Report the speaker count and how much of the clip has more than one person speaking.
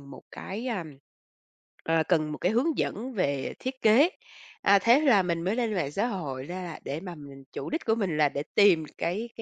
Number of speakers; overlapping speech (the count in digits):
1, no overlap